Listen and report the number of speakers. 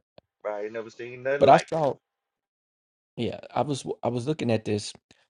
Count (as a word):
two